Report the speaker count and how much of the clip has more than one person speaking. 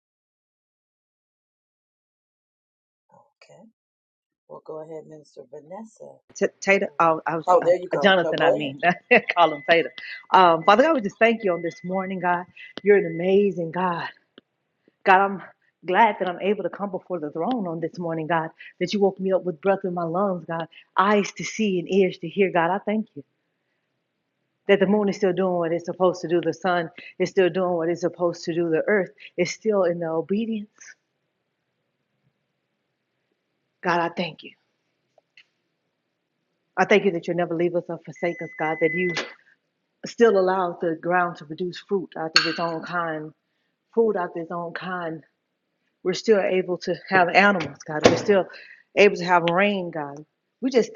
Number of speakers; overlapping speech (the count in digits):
2, about 3%